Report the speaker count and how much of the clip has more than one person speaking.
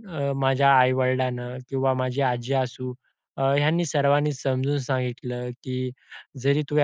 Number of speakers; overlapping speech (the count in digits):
1, no overlap